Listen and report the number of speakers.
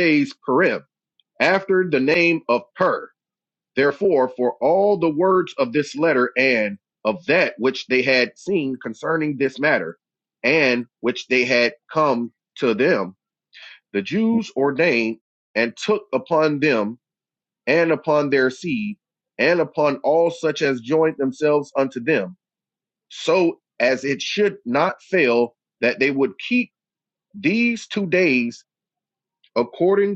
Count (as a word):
one